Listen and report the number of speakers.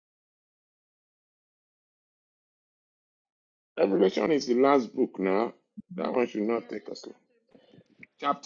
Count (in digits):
1